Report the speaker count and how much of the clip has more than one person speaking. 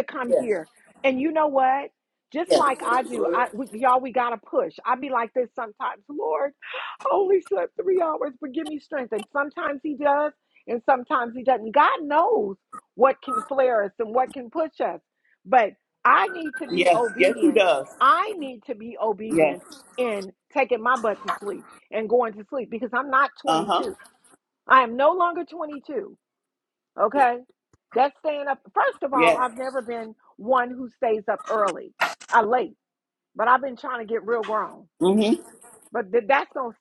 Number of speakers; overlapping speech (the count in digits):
2, about 7%